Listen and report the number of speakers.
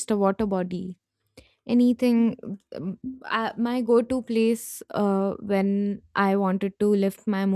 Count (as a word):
one